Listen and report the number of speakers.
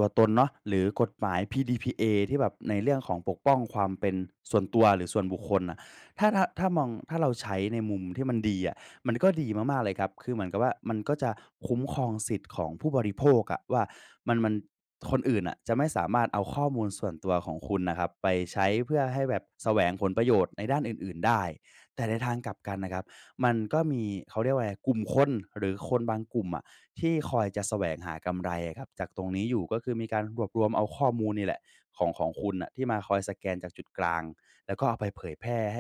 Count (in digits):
1